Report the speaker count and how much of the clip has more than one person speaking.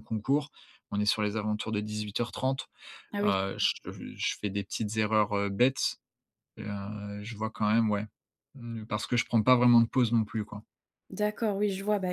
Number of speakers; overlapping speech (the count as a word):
two, about 1%